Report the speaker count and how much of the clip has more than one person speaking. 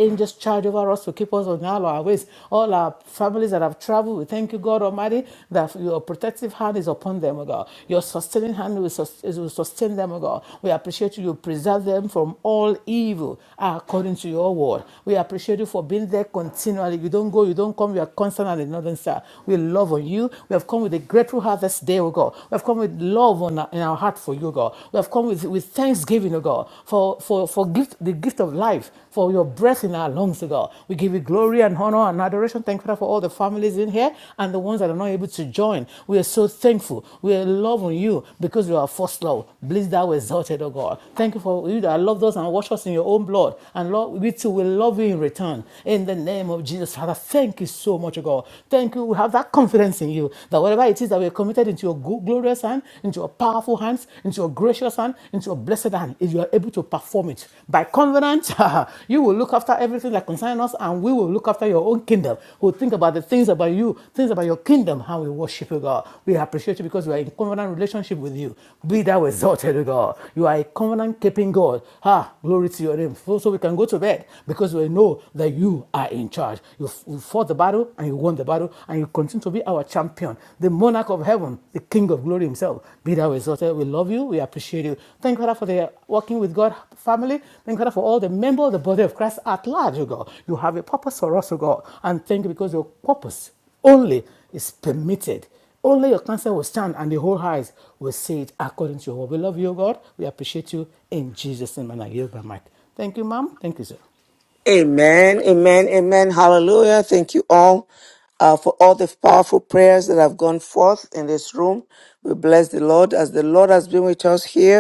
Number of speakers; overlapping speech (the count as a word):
two, no overlap